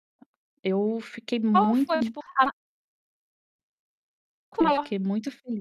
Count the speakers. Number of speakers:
2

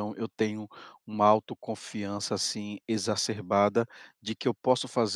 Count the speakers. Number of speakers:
1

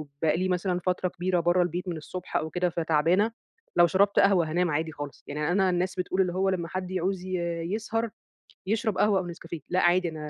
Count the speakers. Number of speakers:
1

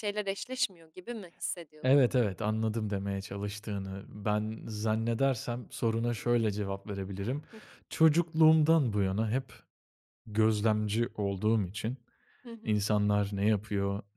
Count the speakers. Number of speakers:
2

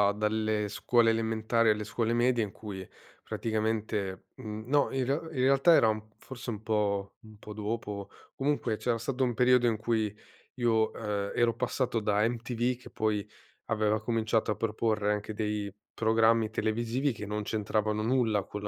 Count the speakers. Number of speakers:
1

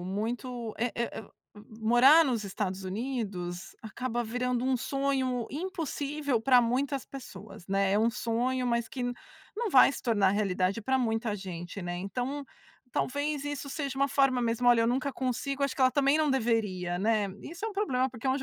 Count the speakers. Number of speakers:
1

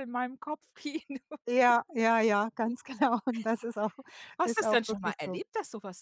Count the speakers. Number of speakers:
2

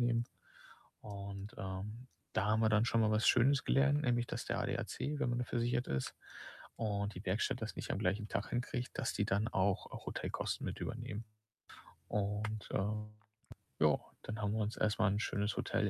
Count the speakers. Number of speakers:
1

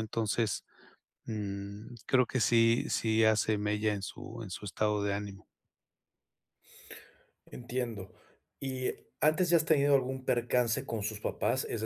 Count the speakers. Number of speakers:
2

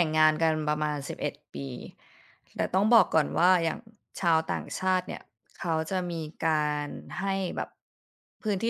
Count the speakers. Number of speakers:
1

